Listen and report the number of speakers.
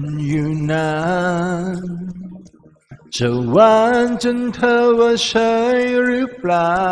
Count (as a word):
one